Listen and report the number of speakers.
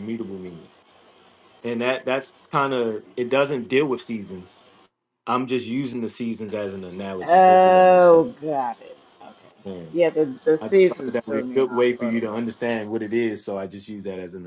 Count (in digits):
2